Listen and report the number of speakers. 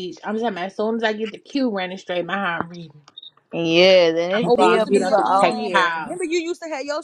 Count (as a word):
three